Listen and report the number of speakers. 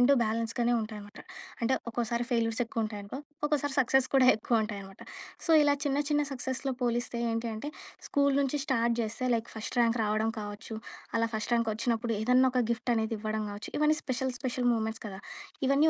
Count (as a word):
one